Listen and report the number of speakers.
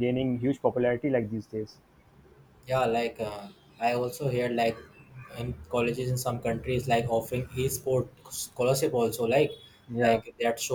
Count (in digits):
2